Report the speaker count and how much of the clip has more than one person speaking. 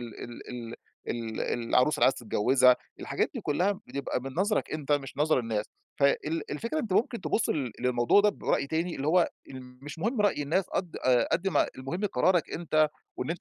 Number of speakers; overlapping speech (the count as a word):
one, no overlap